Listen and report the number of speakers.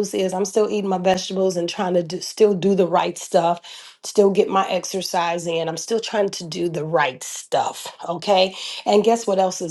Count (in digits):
1